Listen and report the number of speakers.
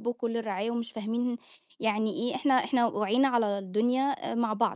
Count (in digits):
1